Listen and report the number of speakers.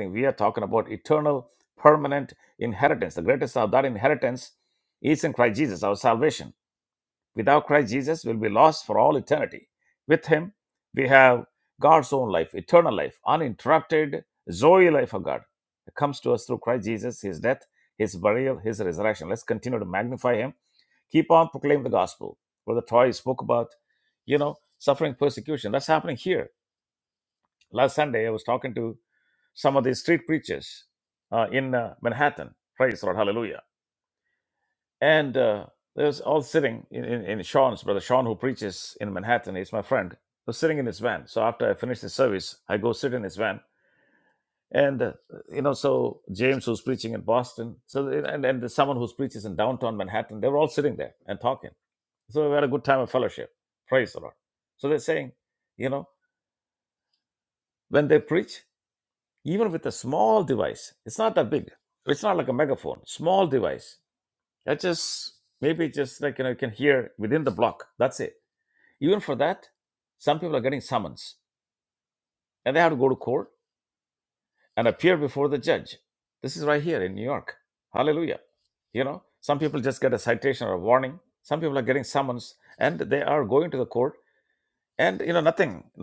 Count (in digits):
1